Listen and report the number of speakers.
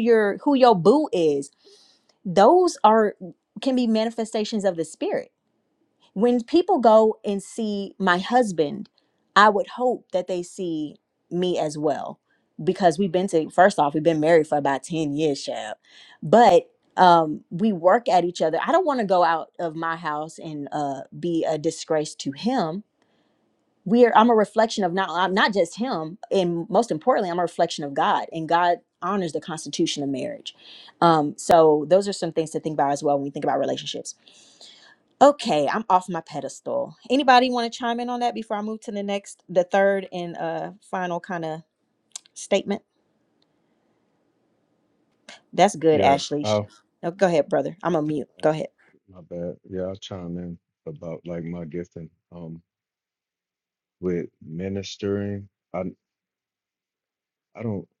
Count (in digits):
2